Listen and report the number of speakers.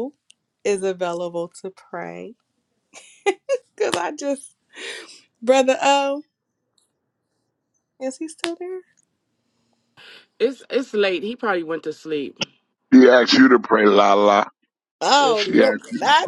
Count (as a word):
three